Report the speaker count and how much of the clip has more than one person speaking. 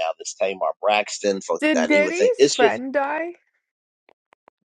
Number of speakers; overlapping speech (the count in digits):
2, about 23%